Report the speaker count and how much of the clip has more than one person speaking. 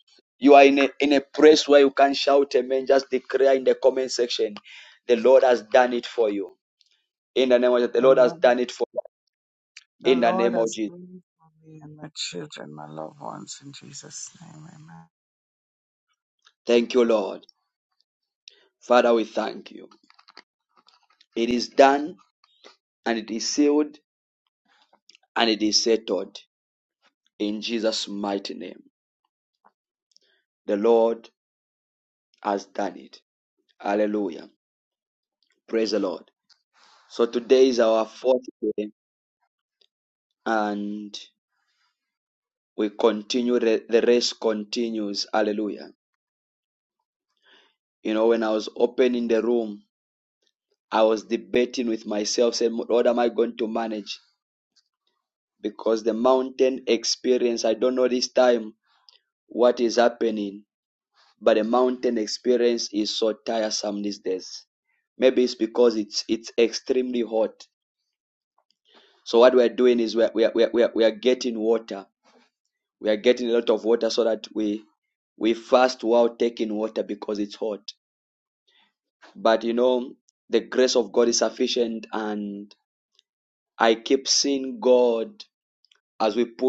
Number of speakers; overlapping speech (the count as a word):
two, about 2%